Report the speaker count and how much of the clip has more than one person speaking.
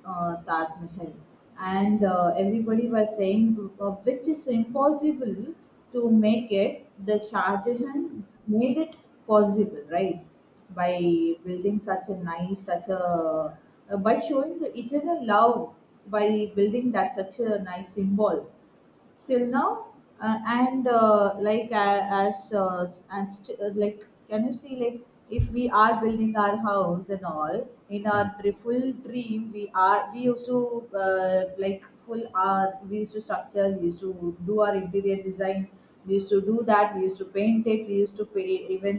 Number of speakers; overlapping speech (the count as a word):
one, no overlap